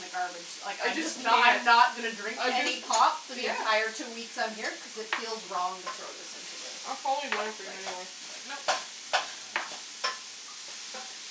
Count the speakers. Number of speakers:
2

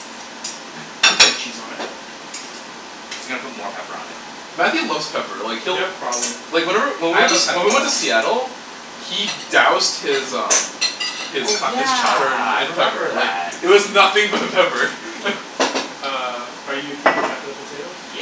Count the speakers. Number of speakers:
4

